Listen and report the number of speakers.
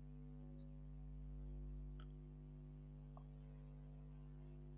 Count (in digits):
0